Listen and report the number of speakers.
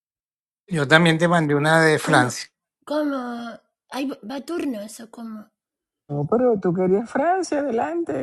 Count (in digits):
3